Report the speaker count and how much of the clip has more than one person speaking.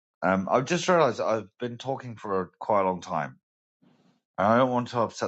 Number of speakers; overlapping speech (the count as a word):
one, no overlap